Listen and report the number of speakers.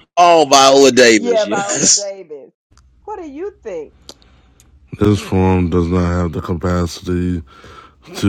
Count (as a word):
three